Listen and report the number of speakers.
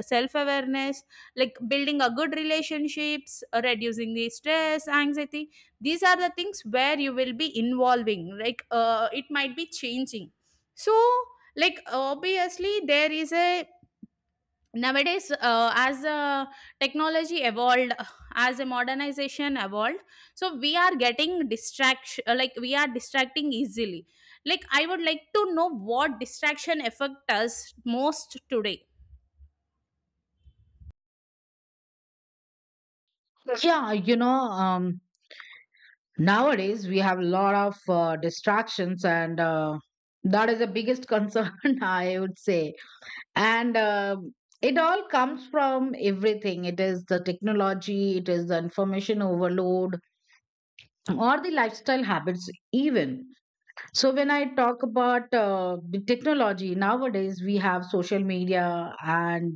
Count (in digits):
2